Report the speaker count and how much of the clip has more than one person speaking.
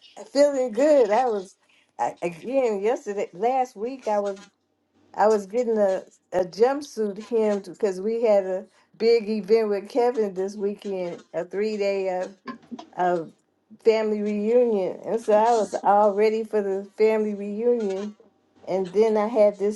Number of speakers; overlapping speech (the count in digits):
1, no overlap